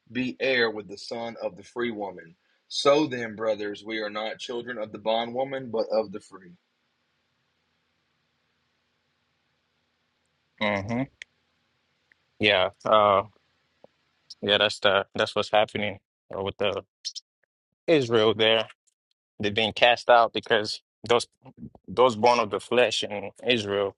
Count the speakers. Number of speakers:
two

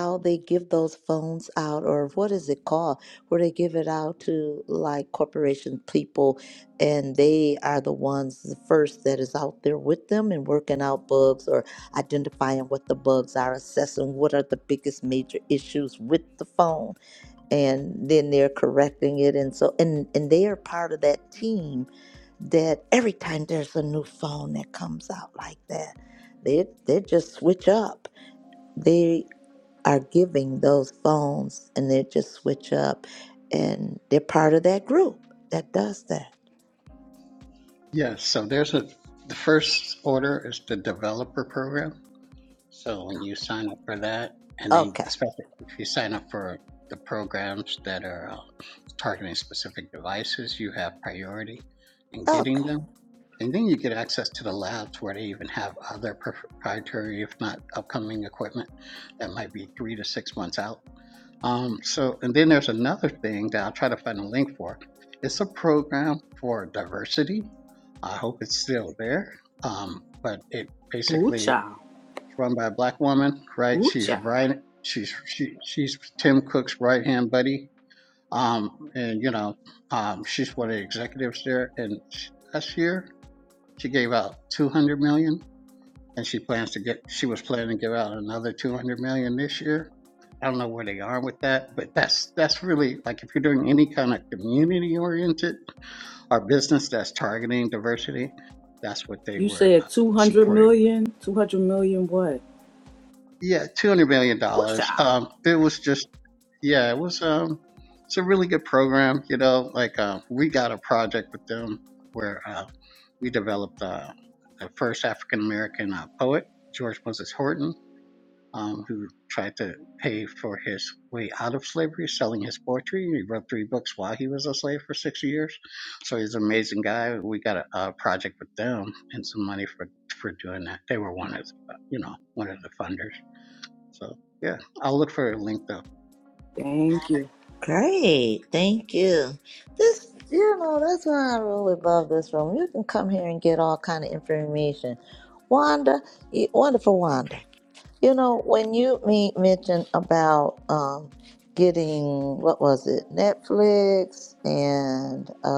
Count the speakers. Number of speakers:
three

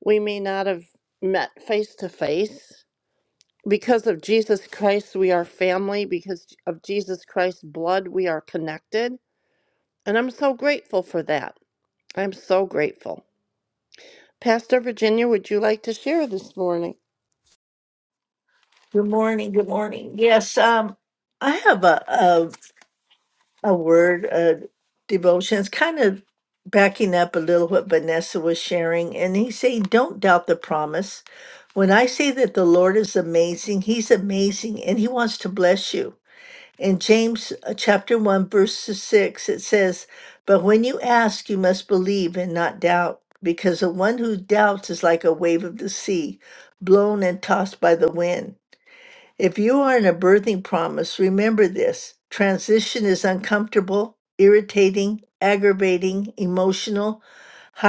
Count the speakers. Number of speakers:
two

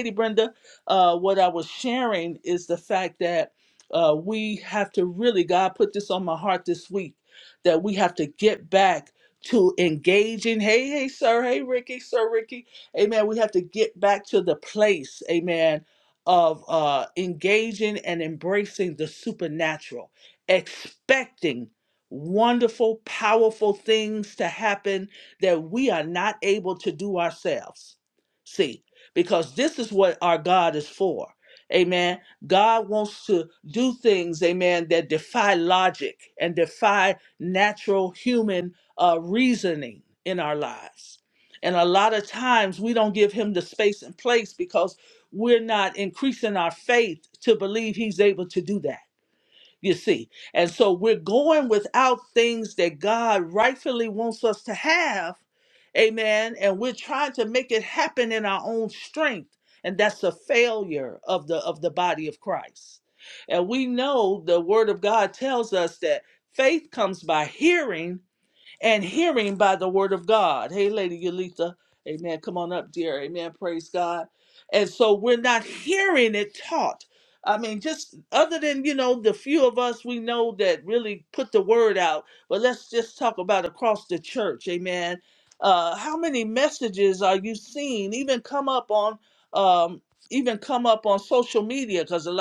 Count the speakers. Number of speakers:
one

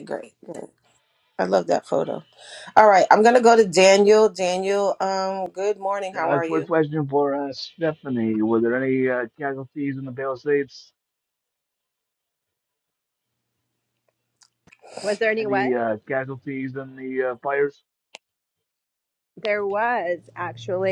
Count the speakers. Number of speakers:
three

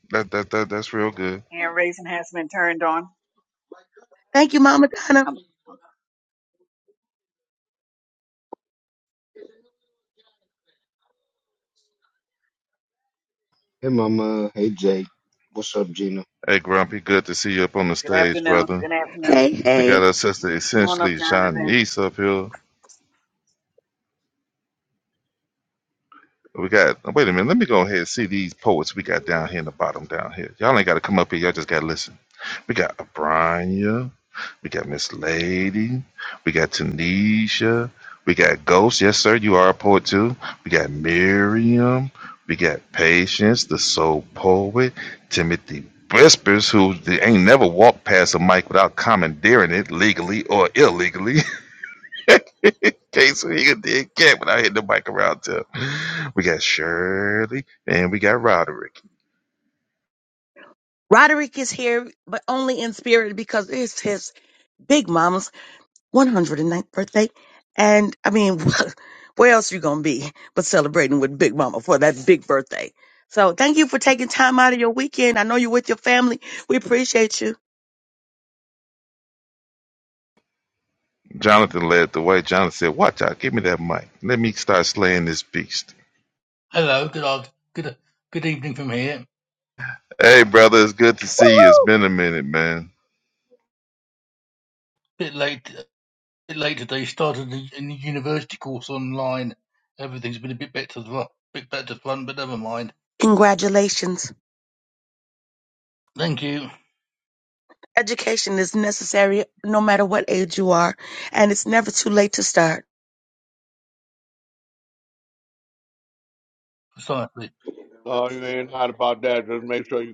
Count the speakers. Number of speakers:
six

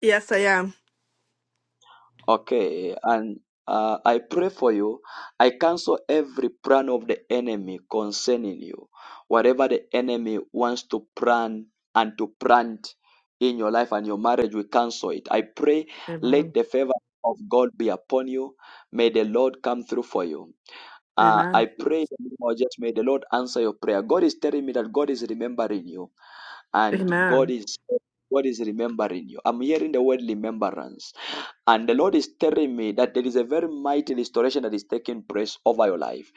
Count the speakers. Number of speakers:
two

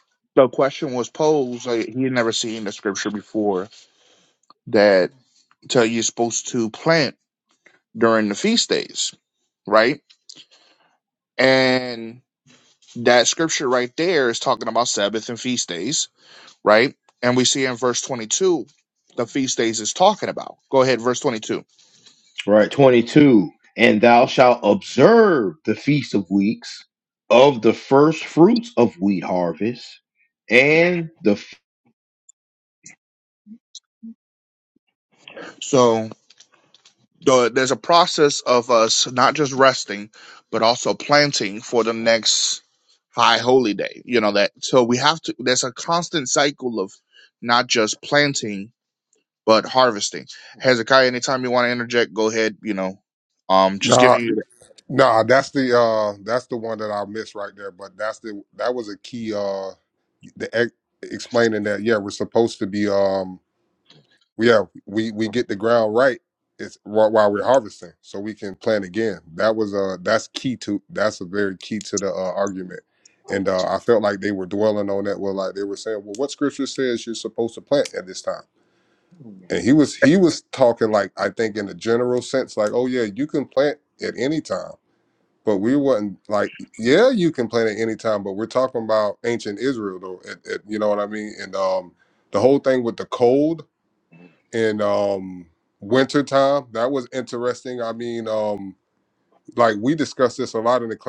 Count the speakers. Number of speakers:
three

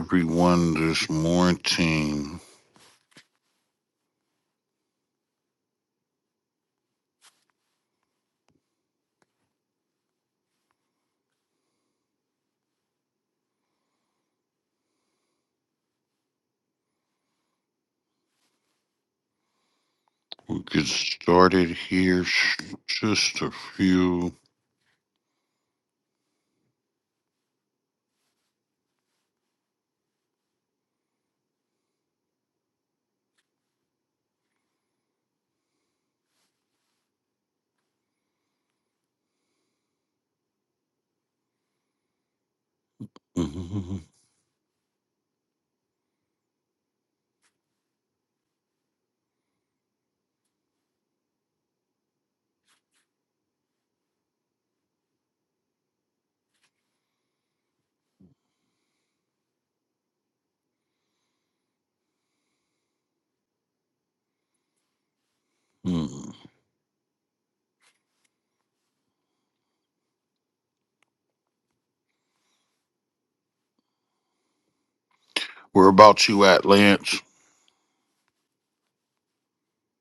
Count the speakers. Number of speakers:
one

